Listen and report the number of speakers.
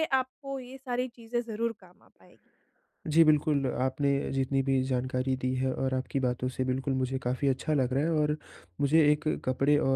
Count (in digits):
2